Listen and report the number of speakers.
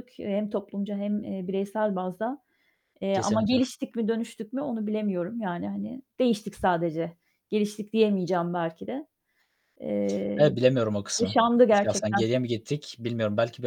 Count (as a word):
two